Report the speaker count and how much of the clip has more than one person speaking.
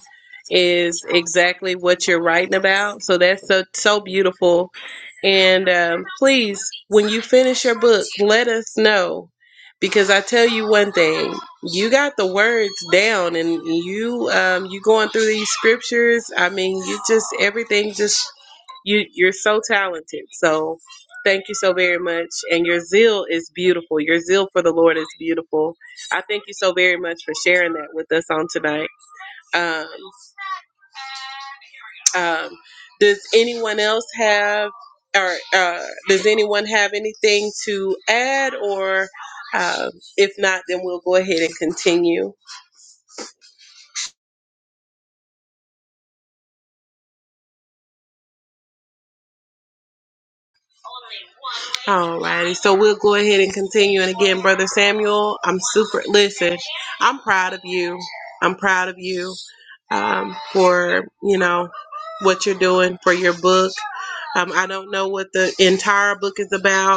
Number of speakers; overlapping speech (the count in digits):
1, no overlap